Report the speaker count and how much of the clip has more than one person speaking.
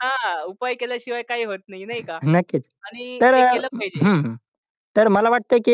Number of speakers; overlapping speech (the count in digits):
2, about 10%